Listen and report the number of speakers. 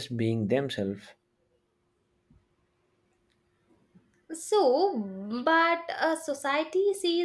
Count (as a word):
two